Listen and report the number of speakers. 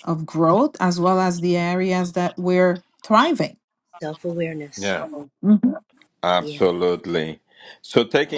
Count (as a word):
three